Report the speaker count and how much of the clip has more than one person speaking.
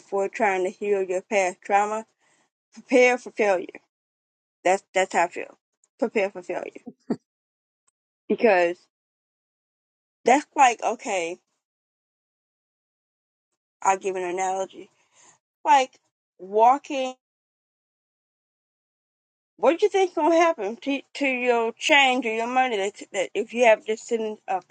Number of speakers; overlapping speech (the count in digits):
1, no overlap